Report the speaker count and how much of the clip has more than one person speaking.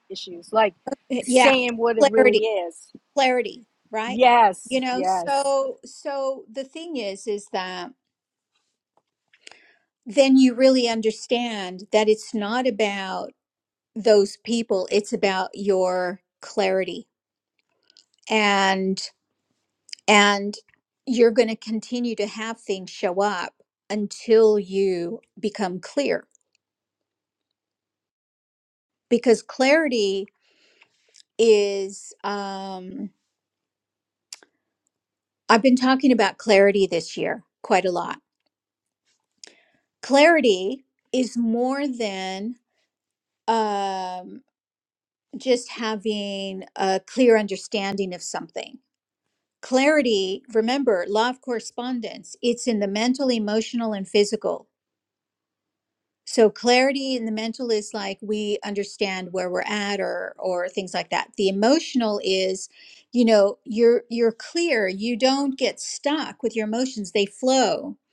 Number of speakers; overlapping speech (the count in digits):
2, about 2%